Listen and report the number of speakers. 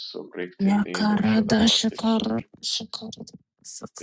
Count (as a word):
two